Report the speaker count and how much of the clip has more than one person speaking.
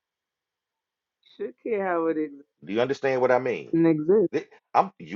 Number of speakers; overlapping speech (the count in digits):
2, no overlap